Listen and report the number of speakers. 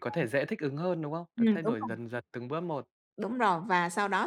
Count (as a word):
two